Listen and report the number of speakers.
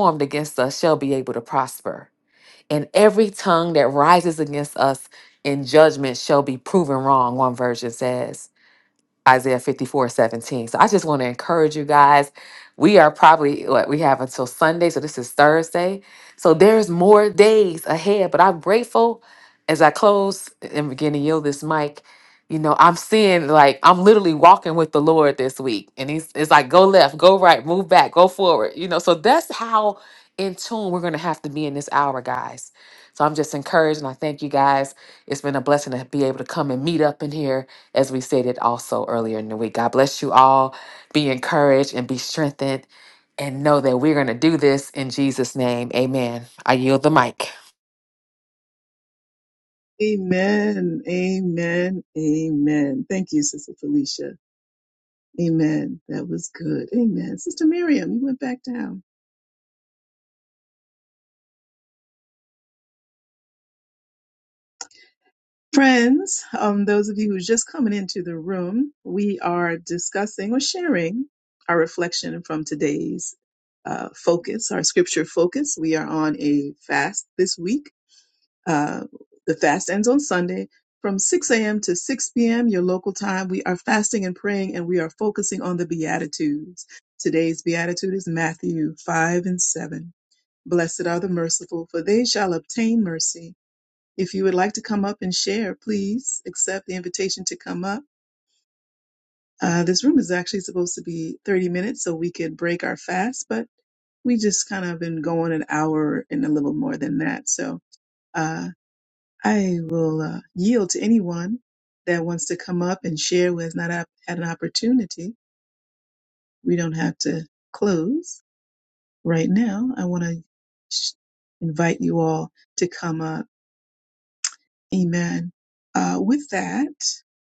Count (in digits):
2